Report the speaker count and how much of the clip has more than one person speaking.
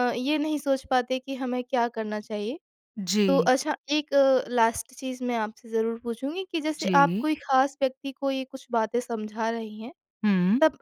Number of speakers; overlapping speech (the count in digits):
2, about 6%